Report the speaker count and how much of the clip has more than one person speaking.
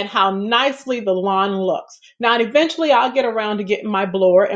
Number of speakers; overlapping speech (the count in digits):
1, no overlap